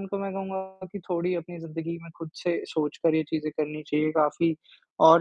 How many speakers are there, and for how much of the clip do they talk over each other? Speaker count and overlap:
1, no overlap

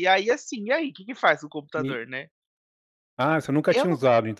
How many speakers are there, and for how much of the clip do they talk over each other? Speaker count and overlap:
2, about 11%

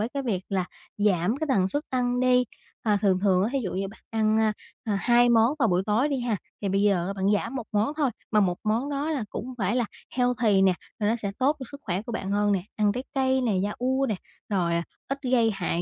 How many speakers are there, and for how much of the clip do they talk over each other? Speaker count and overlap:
1, no overlap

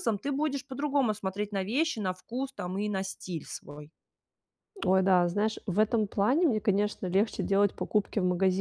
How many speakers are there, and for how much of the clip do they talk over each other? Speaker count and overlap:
2, no overlap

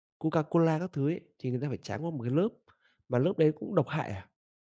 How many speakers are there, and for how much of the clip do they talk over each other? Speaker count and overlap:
1, no overlap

